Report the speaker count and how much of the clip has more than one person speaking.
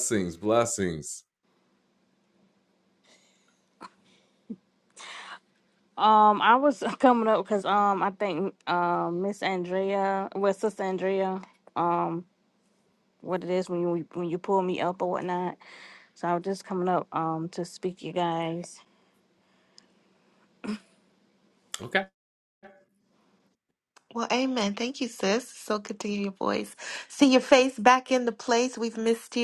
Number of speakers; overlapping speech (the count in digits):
3, no overlap